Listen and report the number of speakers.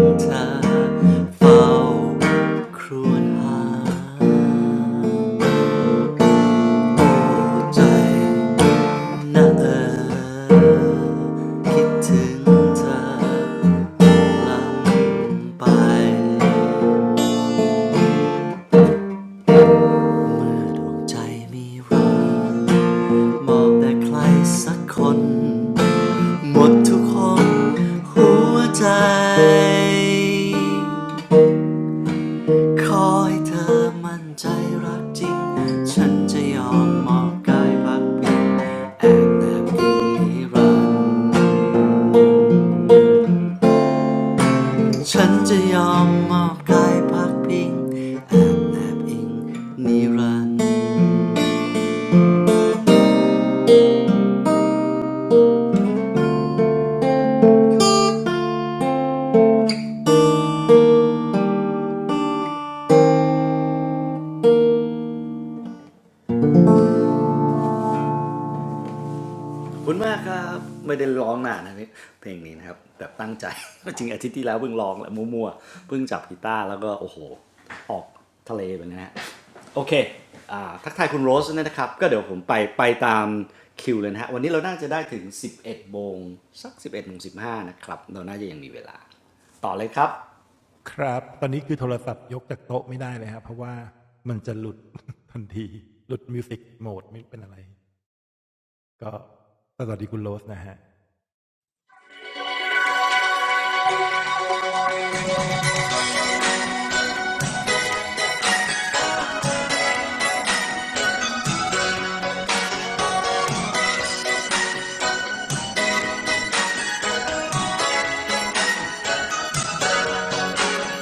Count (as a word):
two